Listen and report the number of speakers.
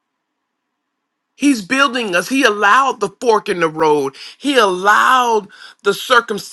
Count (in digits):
1